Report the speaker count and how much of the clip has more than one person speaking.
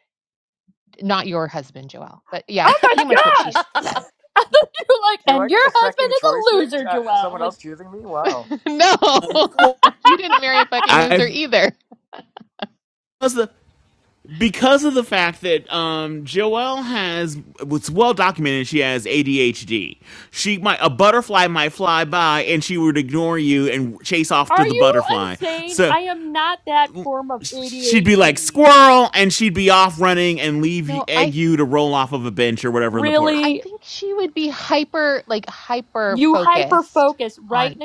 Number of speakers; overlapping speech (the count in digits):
4, about 20%